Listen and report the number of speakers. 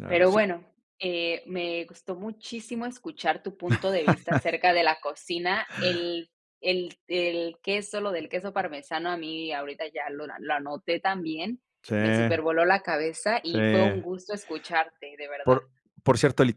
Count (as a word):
two